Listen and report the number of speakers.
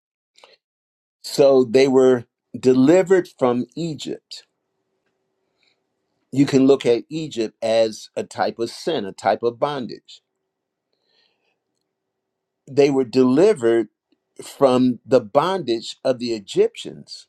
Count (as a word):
one